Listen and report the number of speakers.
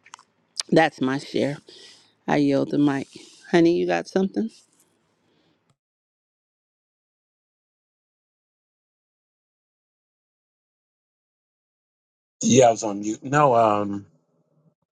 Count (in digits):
2